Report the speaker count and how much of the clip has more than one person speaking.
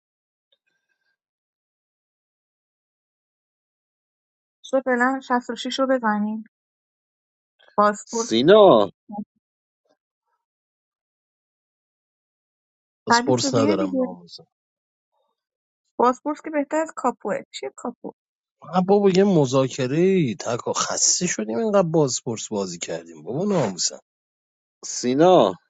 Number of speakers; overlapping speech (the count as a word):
three, about 4%